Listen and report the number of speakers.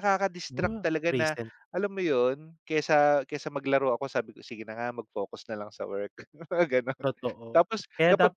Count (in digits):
2